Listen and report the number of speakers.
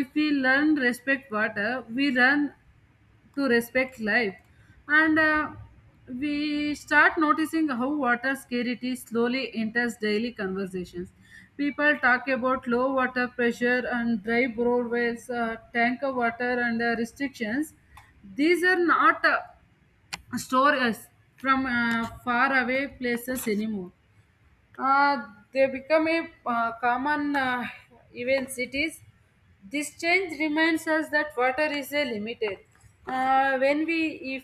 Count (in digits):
1